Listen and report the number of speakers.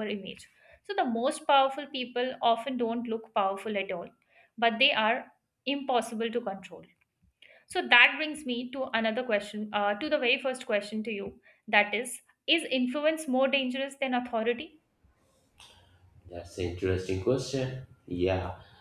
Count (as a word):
two